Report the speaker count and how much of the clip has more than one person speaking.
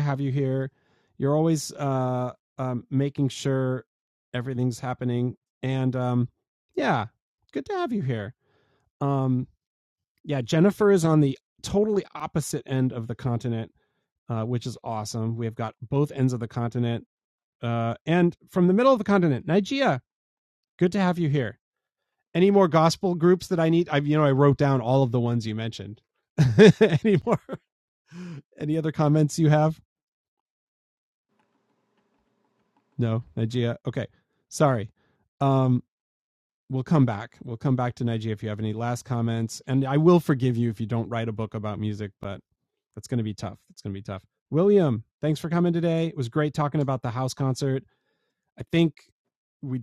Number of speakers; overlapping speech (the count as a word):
one, no overlap